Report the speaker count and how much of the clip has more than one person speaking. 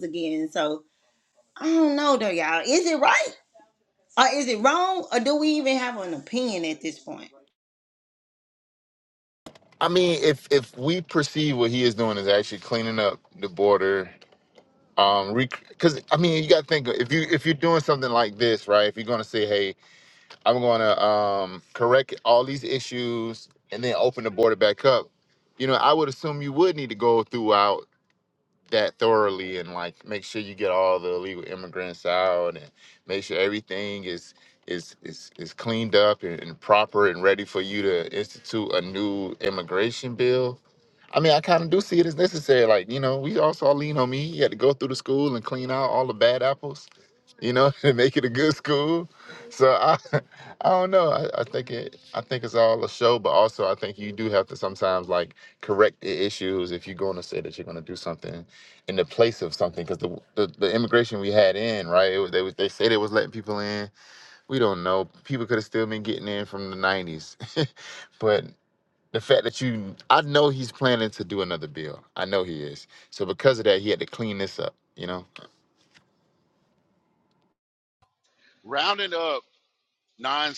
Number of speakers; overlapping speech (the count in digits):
3, no overlap